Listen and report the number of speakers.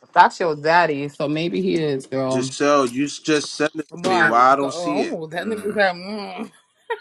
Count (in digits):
3